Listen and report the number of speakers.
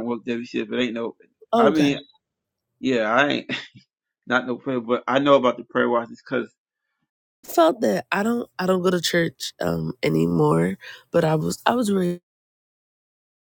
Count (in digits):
2